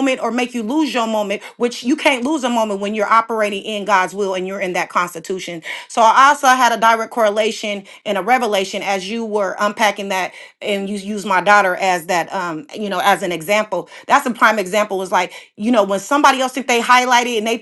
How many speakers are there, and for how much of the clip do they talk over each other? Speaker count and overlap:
1, no overlap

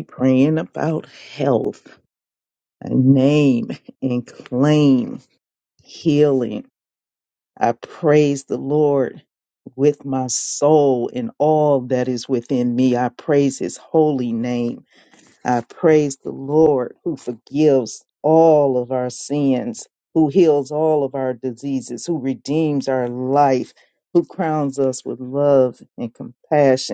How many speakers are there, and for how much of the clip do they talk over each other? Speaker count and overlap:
1, no overlap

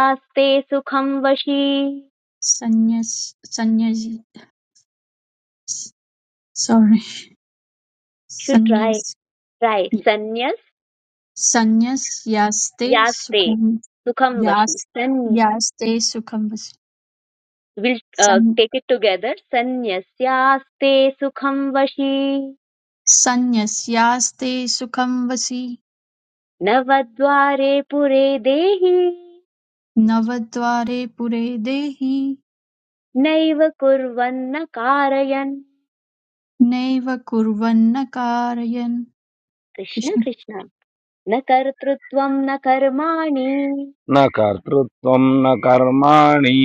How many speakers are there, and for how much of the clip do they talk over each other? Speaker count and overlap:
3, about 3%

